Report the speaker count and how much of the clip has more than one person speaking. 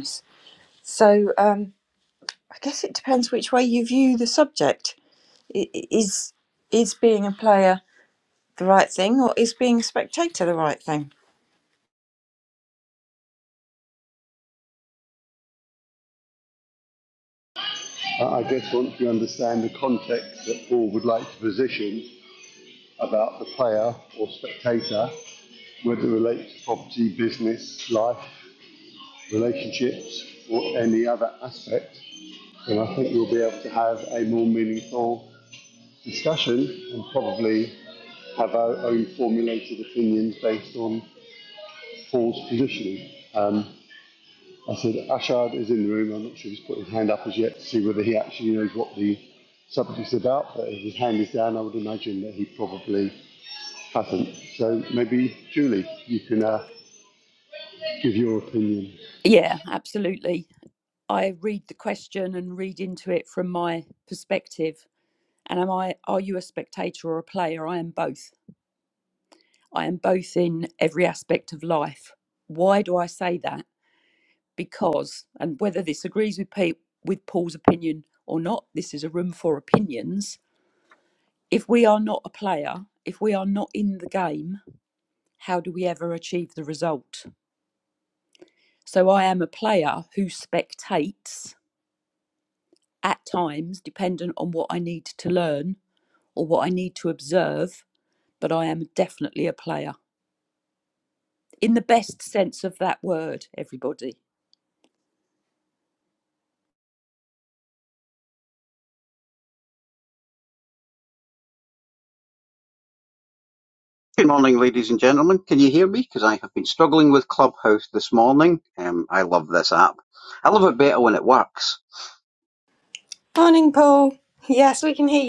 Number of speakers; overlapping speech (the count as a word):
four, no overlap